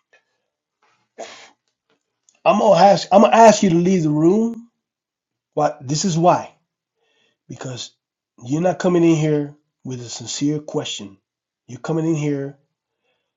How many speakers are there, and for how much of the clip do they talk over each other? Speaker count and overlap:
1, no overlap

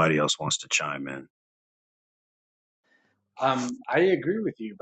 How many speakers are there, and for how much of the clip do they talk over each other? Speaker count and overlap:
2, no overlap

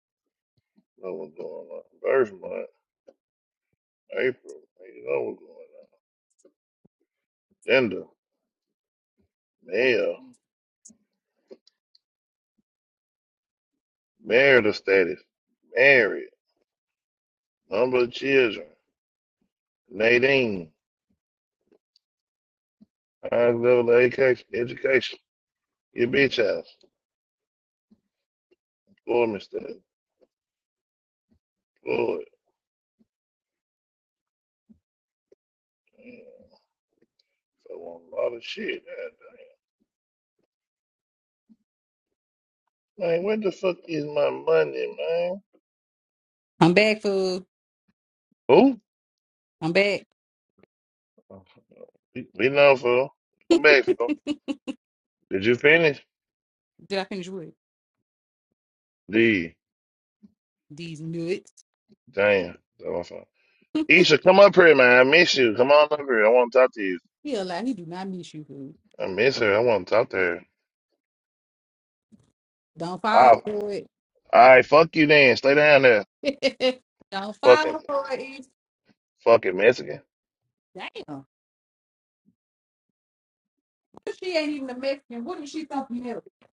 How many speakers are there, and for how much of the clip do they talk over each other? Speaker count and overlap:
2, about 1%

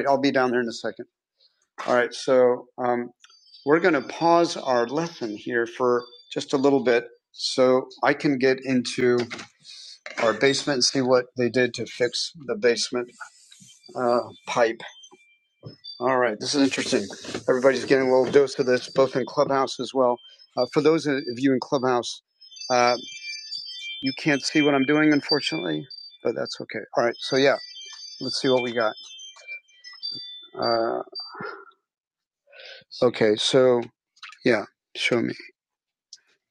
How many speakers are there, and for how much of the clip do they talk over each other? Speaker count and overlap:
1, no overlap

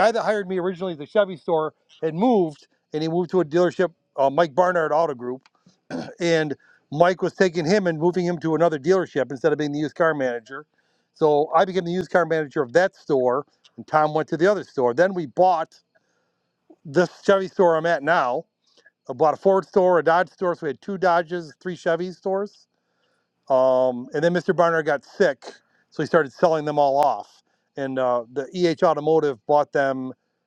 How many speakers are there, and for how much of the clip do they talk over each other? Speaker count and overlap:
1, no overlap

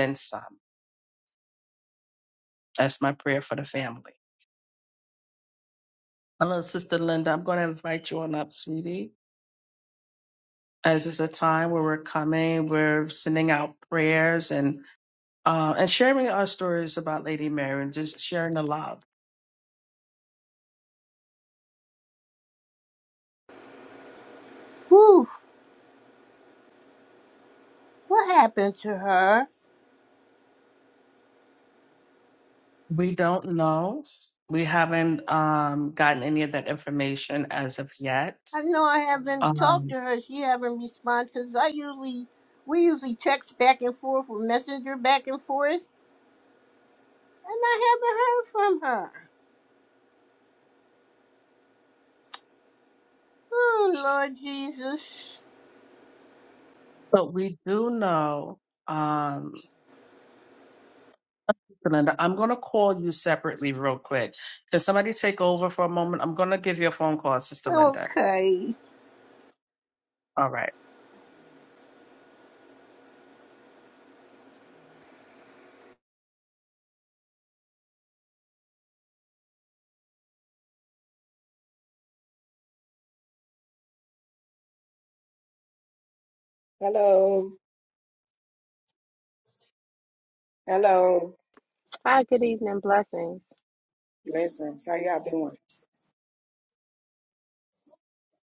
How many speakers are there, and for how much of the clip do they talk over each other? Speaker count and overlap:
4, about 1%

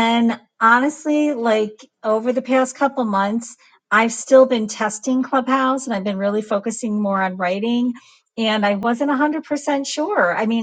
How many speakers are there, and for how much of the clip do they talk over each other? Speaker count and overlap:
1, no overlap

